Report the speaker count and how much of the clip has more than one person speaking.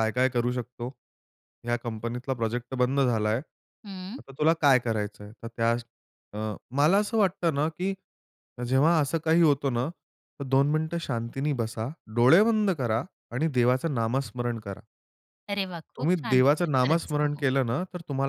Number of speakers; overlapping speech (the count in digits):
2, about 8%